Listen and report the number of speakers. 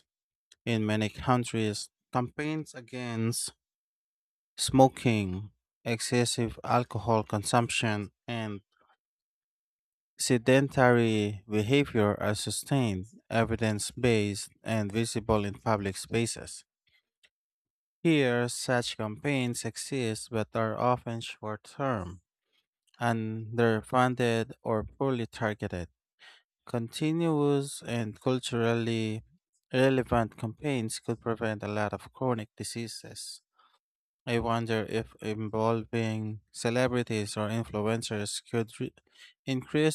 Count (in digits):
1